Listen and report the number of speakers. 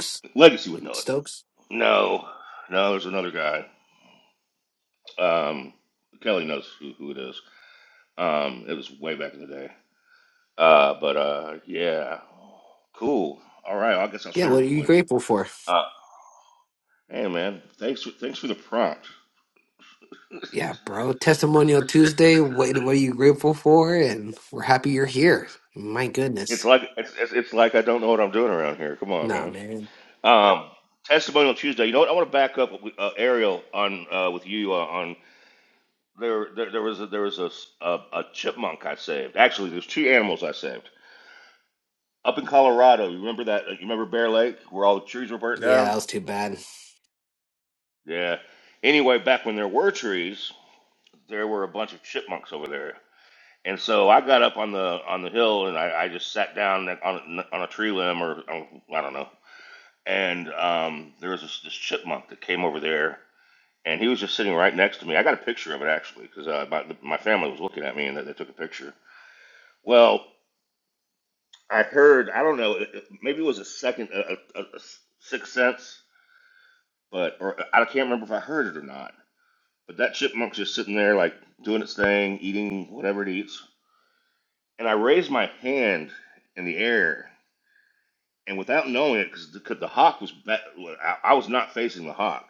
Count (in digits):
2